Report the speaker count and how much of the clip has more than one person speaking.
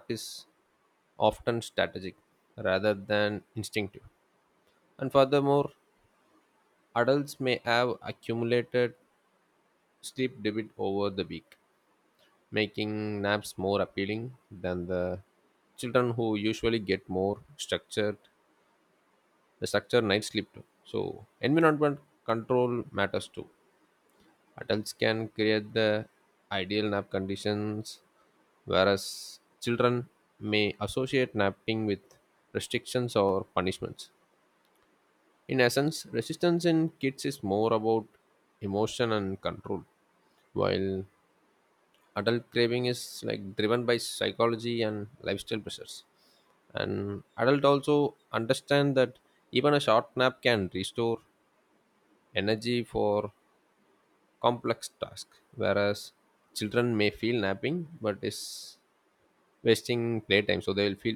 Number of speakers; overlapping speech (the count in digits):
1, no overlap